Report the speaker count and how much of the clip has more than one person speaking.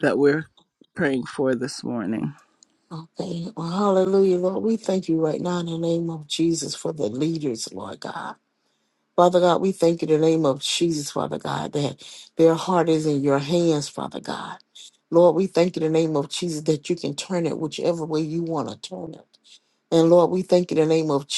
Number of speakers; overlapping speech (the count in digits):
2, no overlap